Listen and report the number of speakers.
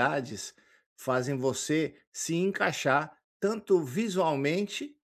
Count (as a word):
one